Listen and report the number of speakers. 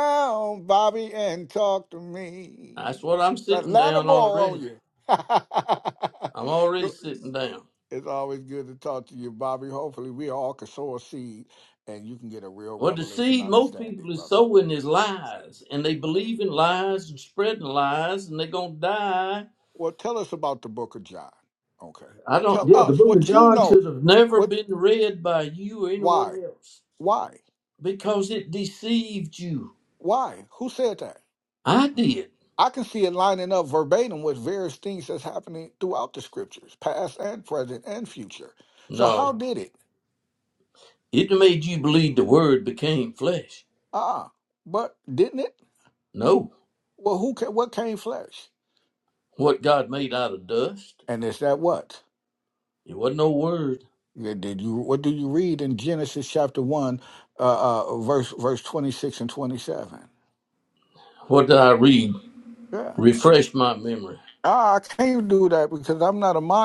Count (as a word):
two